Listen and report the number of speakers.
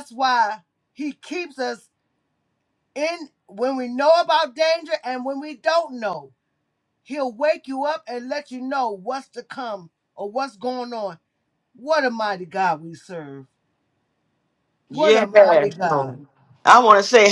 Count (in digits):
2